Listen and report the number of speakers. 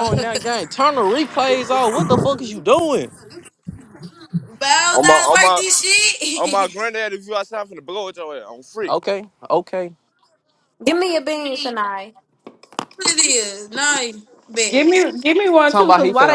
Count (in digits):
5